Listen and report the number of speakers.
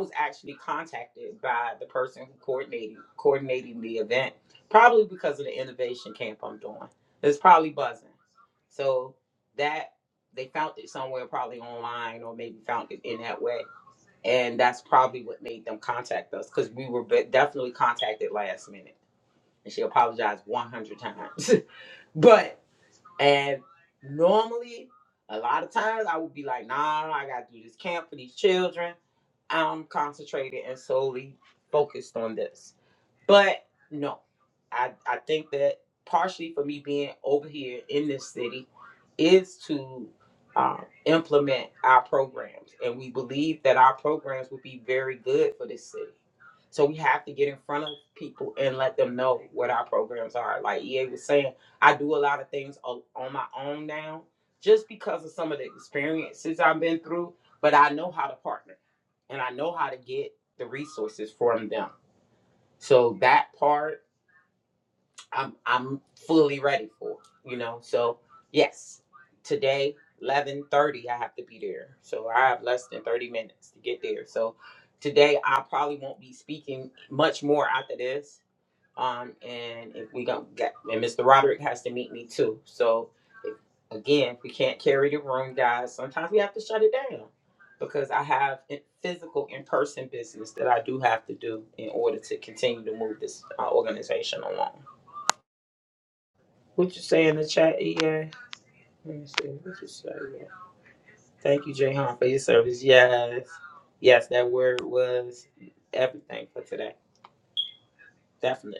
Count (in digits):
1